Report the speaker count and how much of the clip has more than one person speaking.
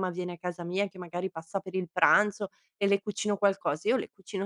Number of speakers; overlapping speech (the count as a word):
one, no overlap